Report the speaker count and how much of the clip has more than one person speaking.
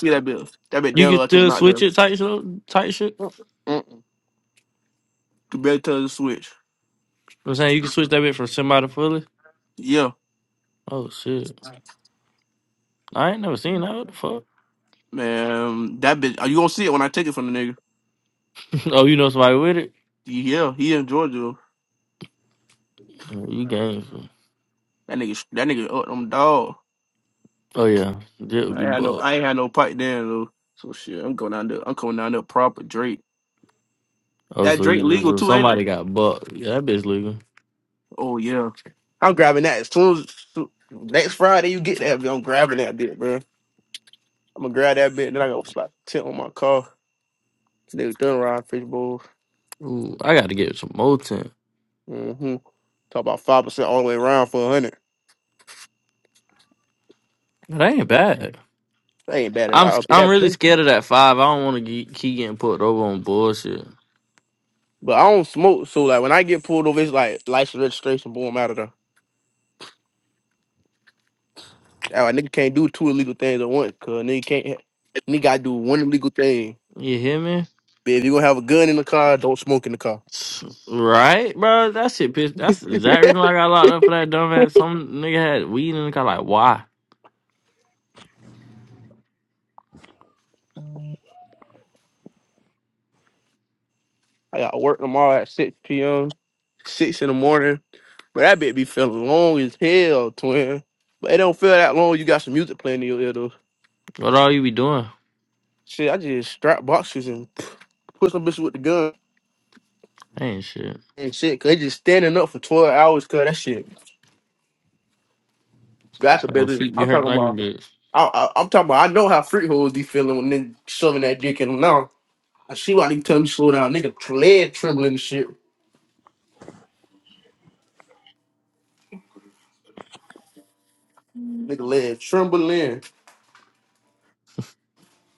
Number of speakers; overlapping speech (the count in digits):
2, about 3%